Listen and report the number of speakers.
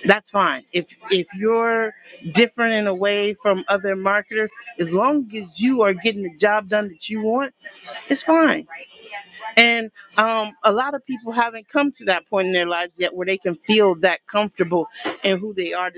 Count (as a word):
one